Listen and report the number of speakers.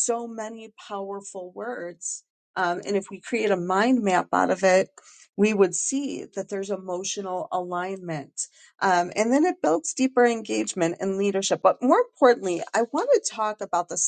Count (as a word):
one